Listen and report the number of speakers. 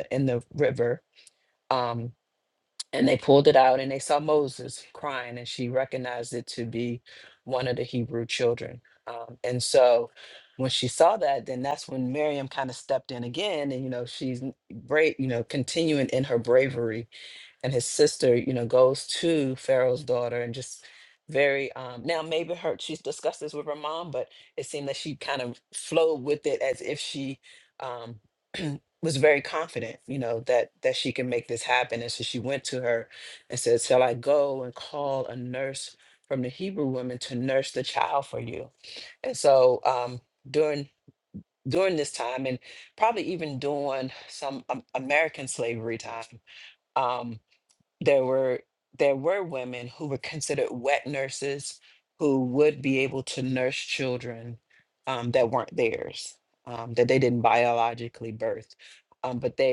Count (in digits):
1